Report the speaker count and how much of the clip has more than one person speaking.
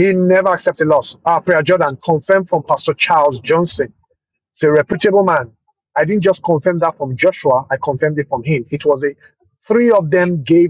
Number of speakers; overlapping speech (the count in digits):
1, no overlap